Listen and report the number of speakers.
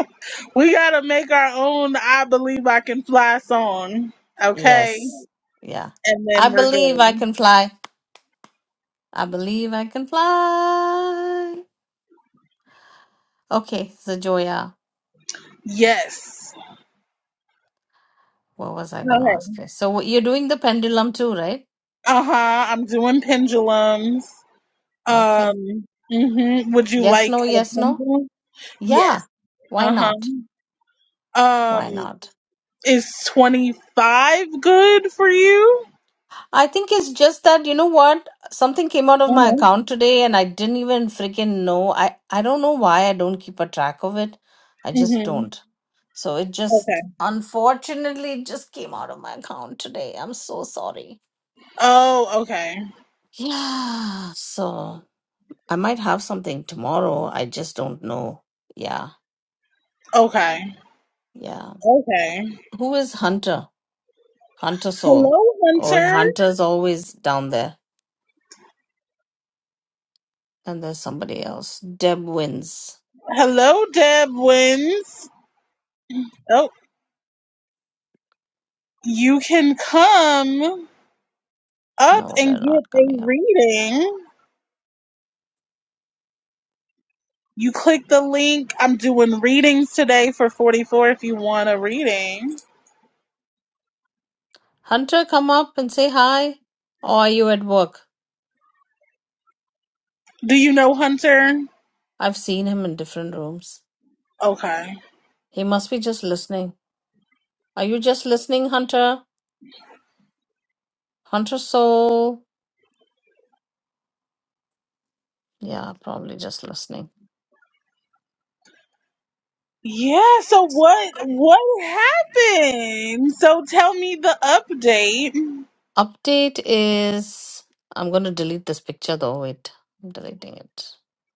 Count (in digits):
2